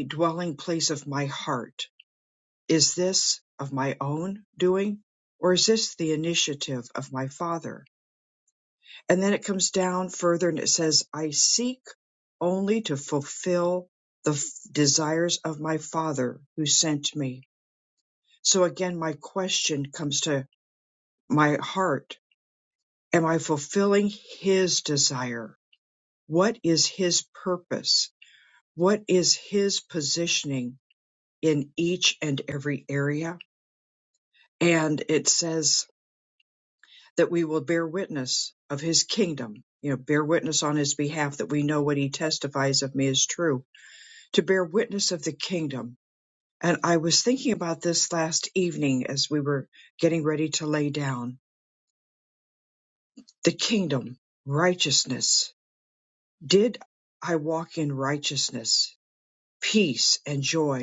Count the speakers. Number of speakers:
1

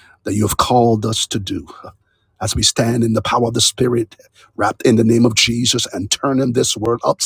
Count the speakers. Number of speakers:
1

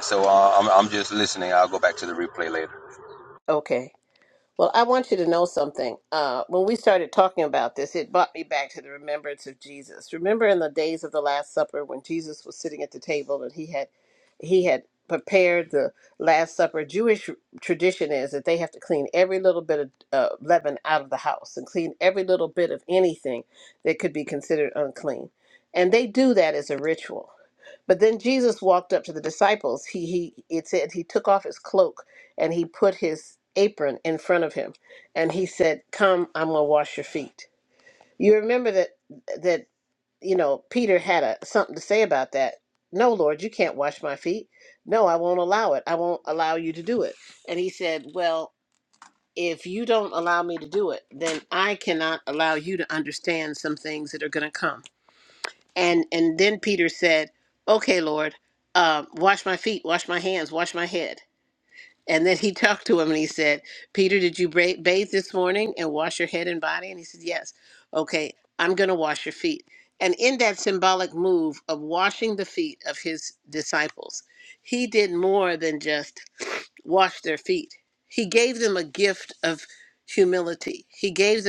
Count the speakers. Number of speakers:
2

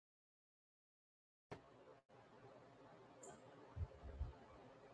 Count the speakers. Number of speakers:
0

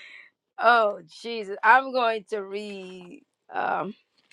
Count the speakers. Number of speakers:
1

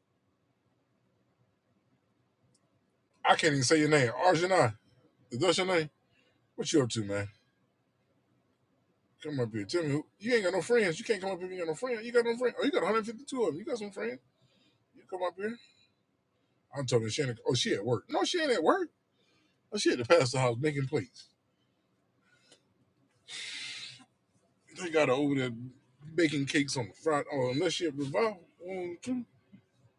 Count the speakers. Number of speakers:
1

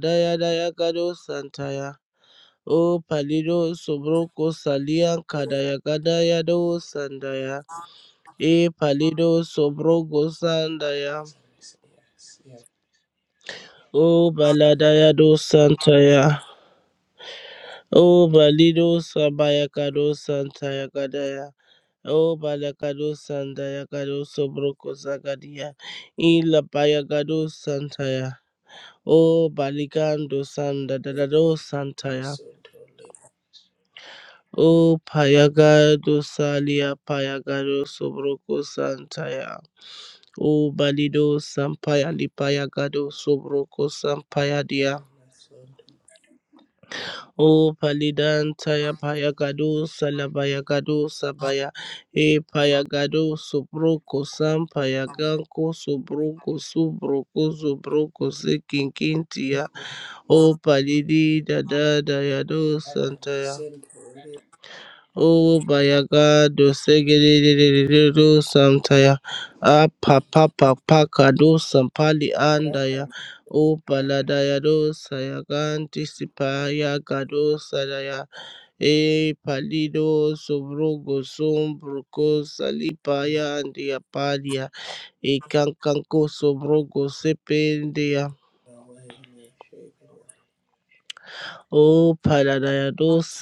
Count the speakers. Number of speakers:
2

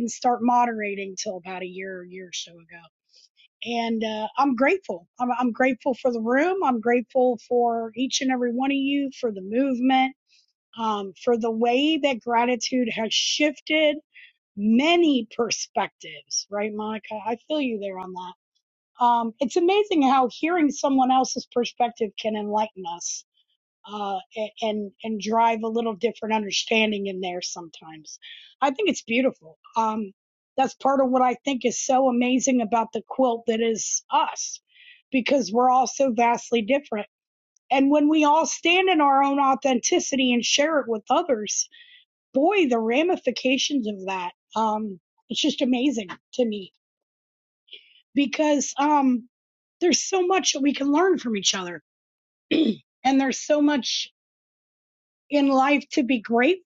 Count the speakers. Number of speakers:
1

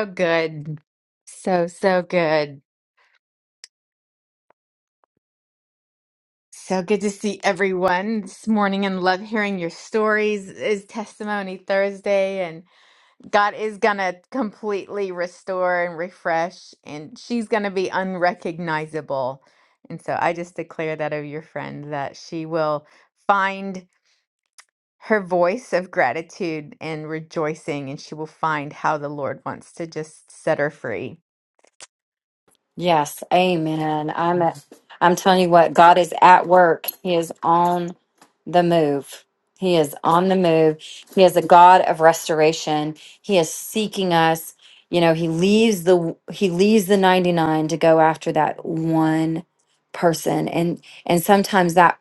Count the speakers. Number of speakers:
2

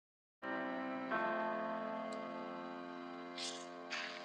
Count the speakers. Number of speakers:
0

